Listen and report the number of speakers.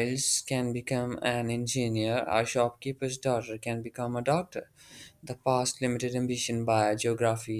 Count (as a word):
one